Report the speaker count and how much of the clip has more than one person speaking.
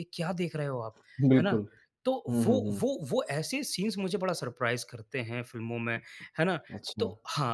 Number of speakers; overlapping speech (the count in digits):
2, about 12%